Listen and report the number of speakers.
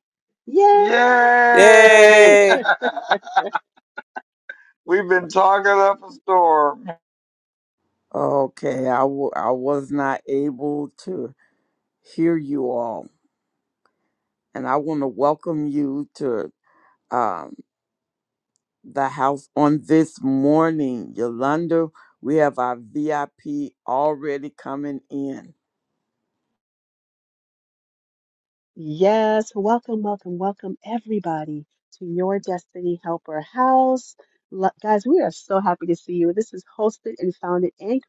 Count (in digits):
4